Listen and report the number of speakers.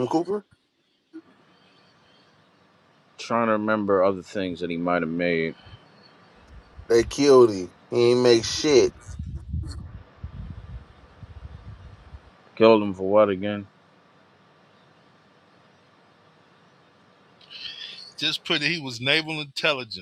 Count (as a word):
three